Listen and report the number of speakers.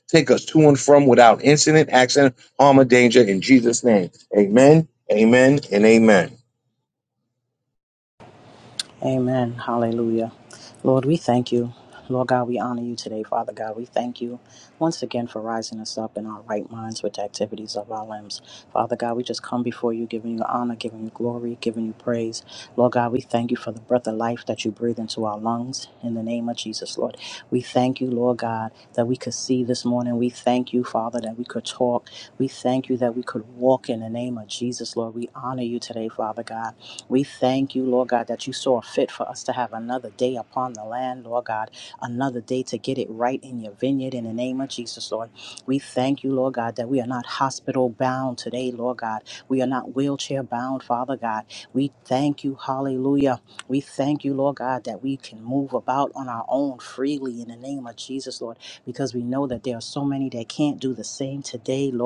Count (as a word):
two